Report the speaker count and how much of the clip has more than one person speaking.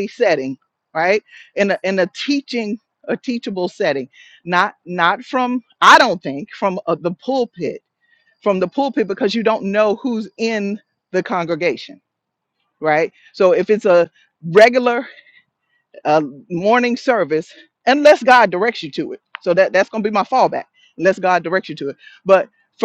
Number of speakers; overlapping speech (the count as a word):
one, no overlap